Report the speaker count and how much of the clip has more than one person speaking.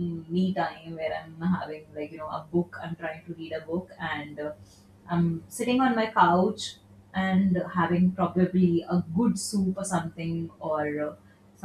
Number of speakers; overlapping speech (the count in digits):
1, no overlap